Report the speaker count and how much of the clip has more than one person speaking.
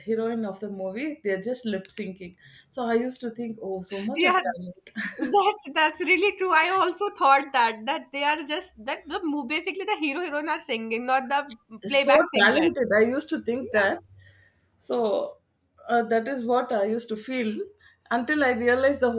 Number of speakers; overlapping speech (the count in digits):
2, about 6%